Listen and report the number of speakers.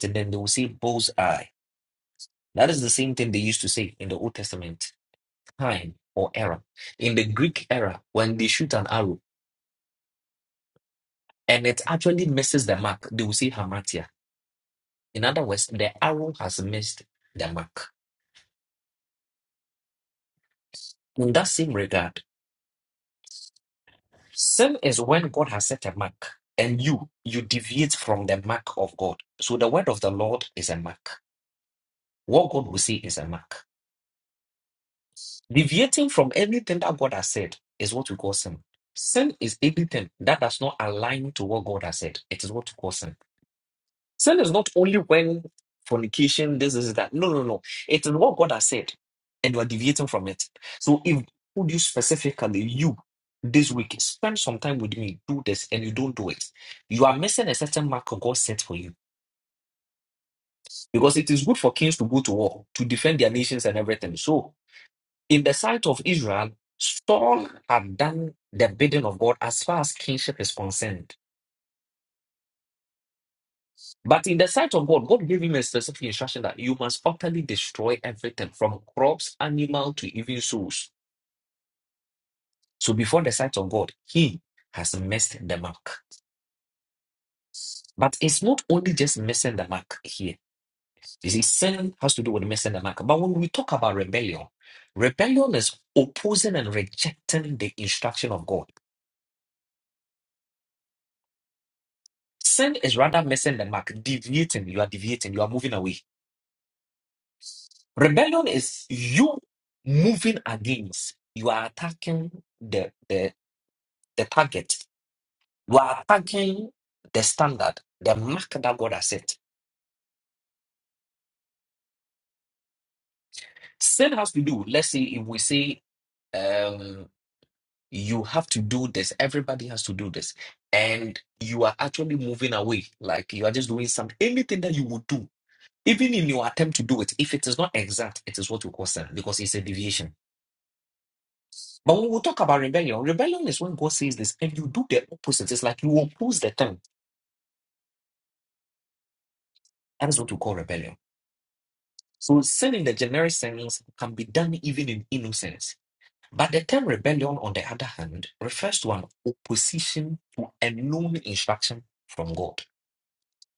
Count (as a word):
one